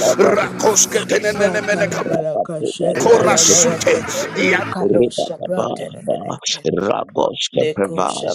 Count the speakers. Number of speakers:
three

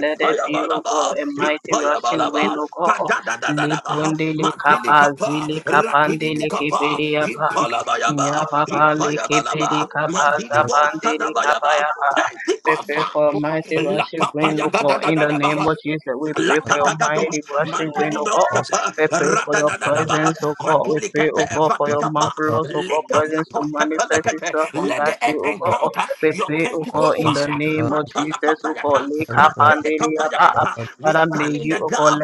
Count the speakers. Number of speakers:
two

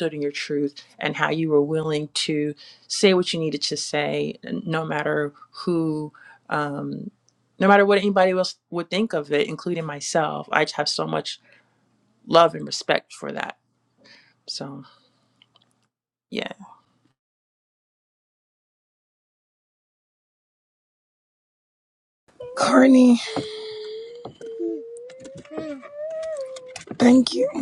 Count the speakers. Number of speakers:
two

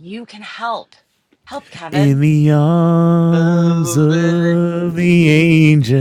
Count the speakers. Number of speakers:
three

